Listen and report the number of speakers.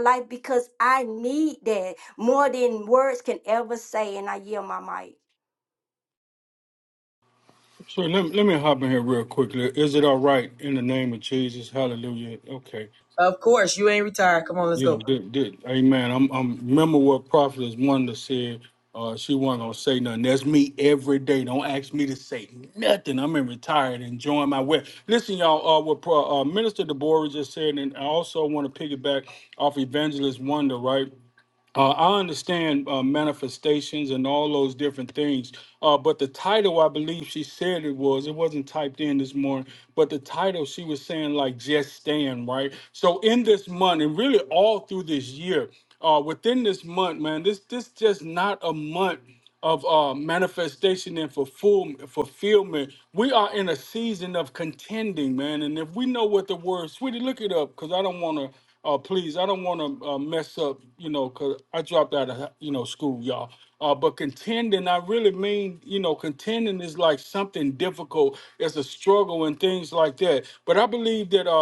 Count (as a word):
three